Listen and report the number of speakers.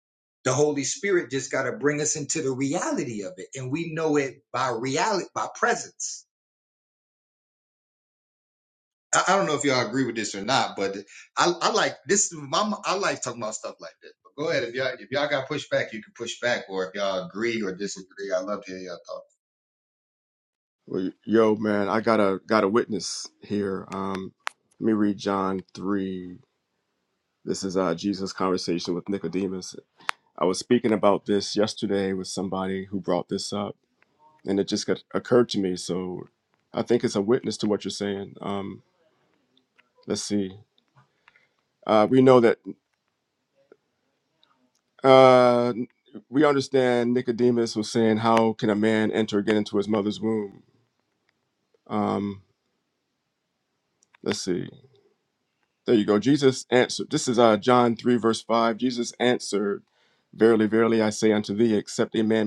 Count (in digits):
2